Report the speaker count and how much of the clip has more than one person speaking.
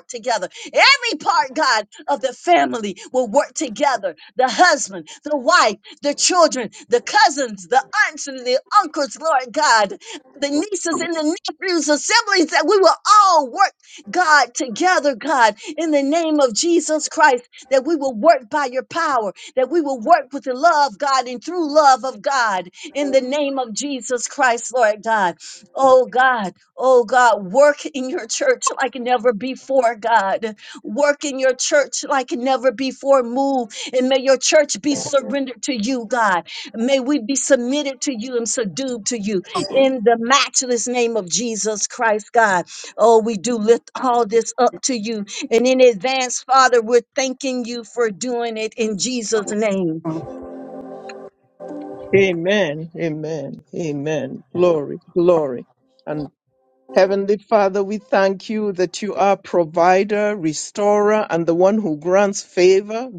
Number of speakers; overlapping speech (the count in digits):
2, no overlap